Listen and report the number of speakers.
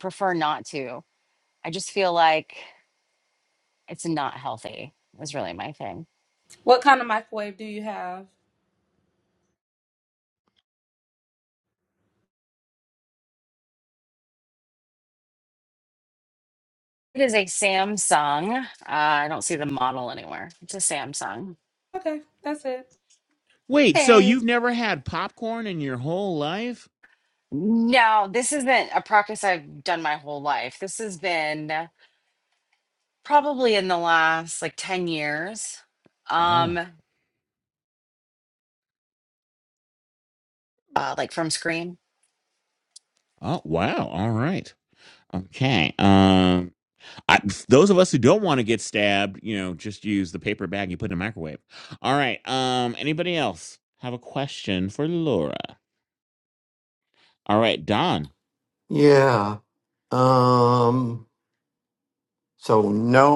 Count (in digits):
4